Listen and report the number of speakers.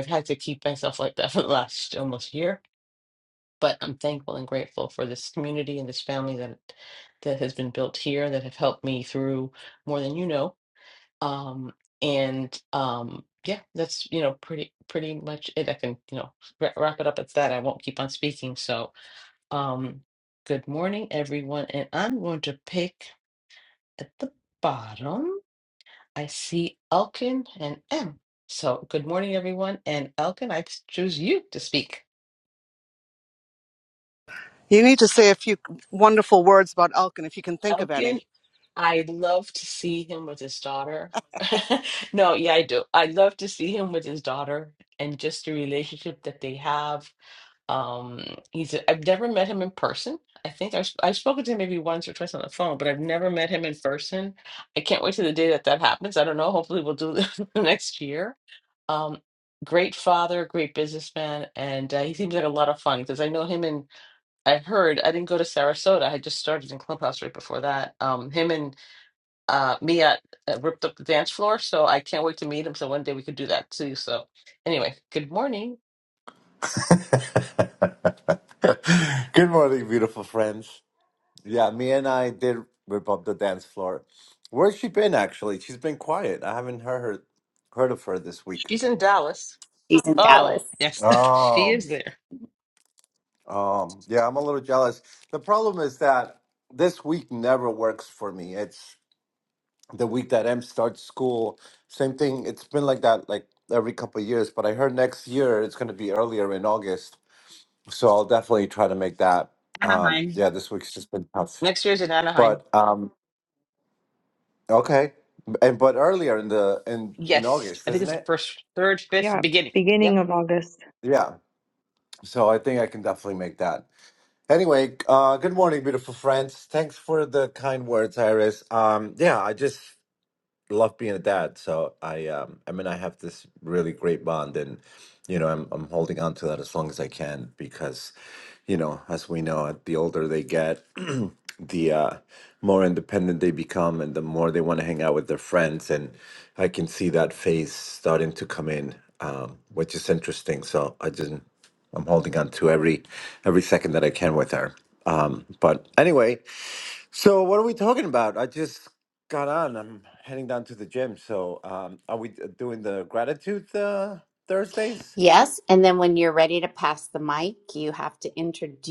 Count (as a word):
five